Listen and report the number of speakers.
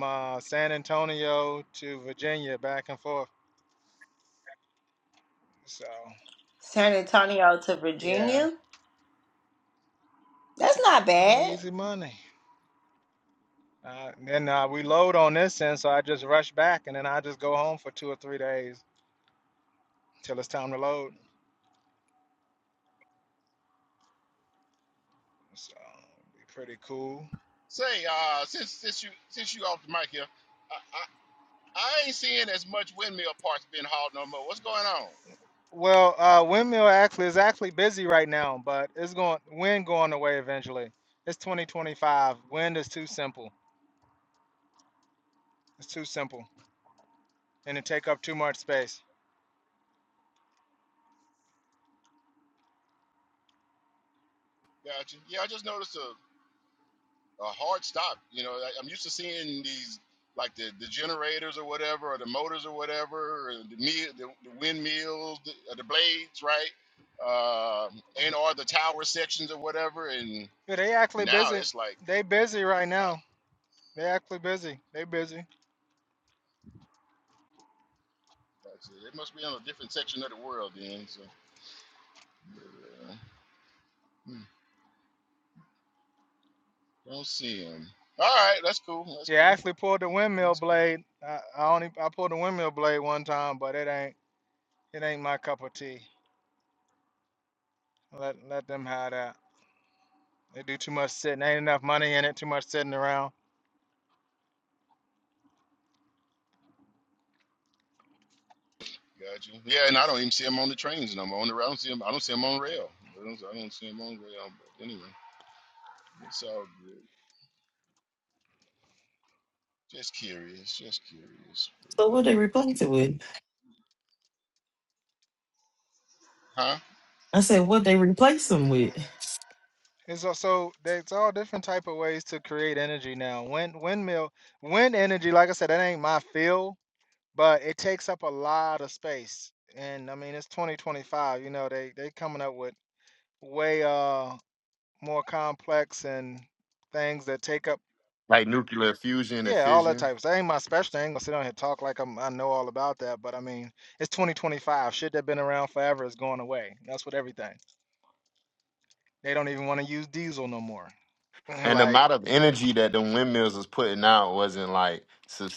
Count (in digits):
5